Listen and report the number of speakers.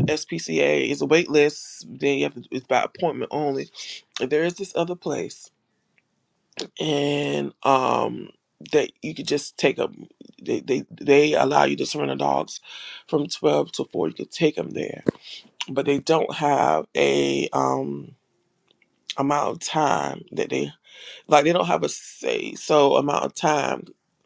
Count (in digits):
1